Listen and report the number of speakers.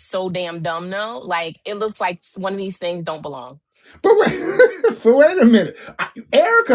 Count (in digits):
2